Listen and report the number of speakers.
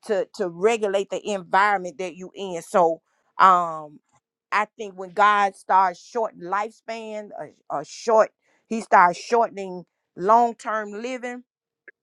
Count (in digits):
1